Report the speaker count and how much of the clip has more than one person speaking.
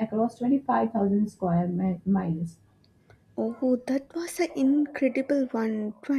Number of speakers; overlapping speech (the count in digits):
2, no overlap